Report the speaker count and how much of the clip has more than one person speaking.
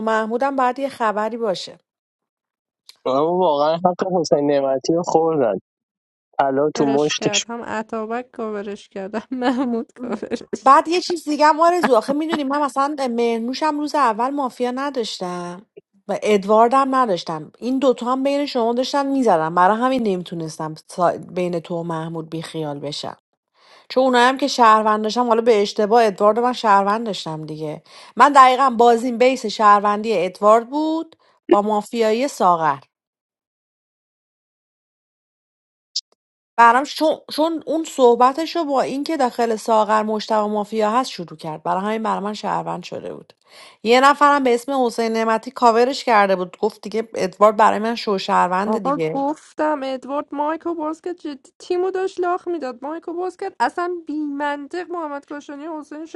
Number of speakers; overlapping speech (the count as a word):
three, about 2%